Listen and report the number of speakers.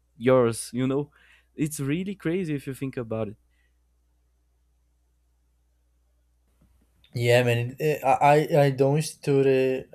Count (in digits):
2